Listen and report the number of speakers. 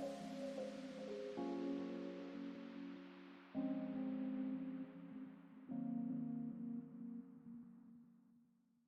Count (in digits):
0